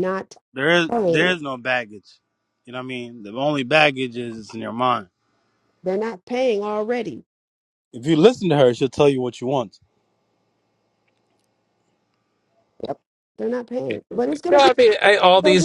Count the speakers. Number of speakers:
3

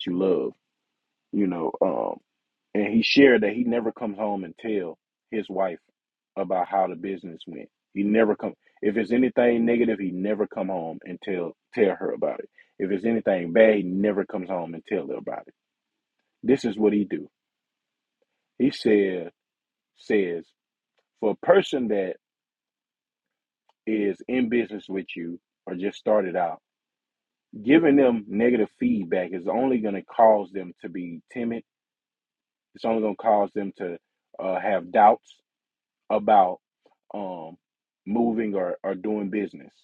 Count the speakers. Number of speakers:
1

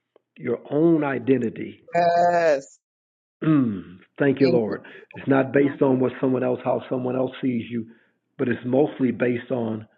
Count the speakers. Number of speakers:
2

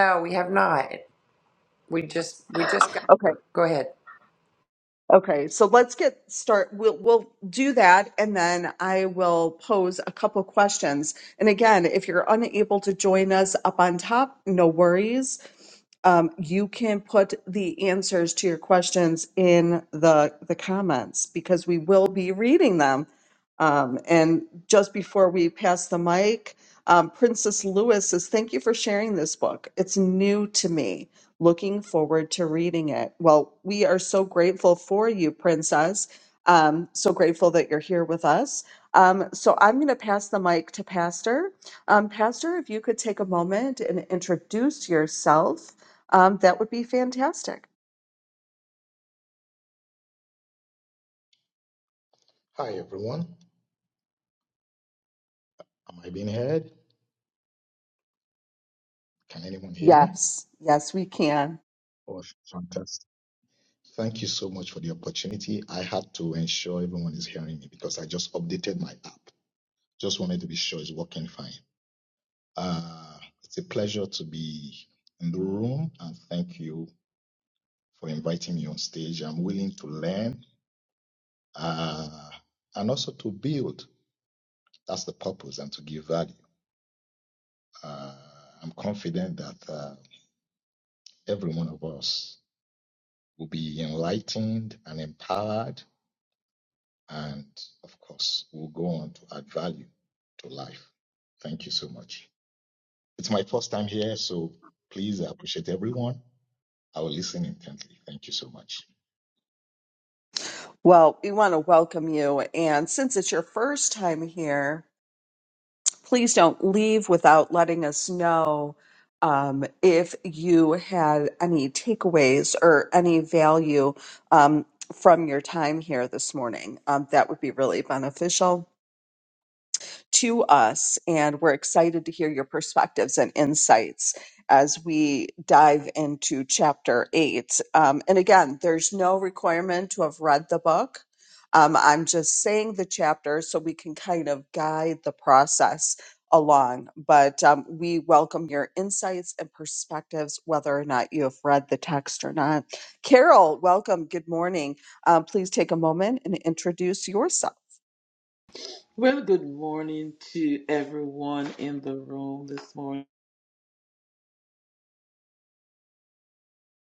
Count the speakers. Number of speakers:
4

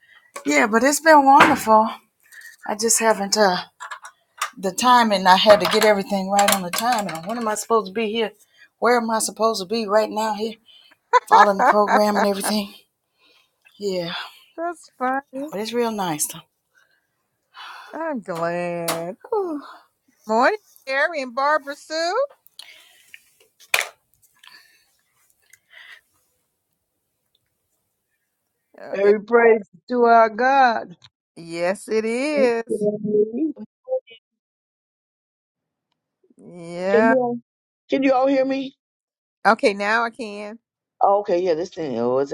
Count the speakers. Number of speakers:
4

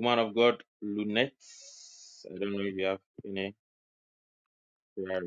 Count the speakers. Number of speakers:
1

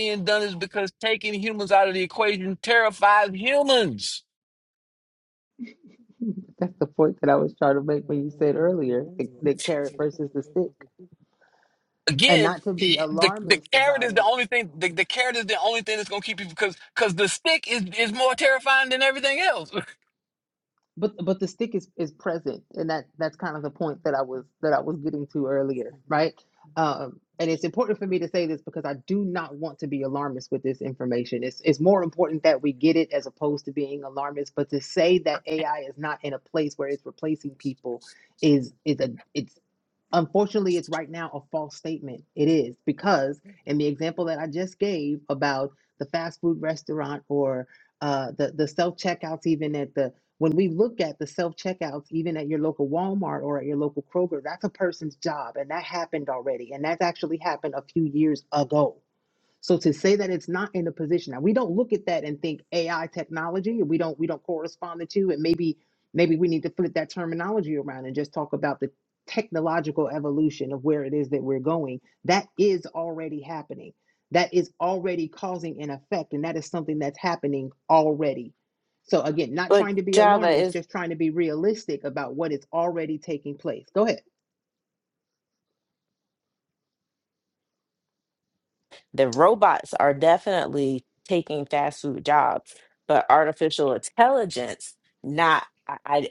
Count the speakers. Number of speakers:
3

